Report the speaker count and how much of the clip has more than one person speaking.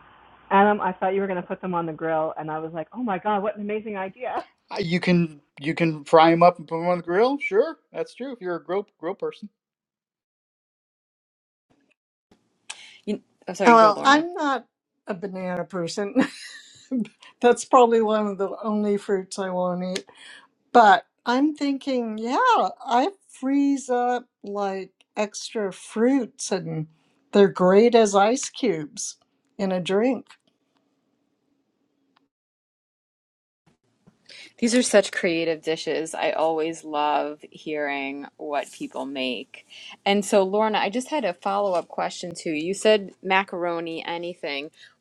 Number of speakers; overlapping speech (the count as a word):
four, about 1%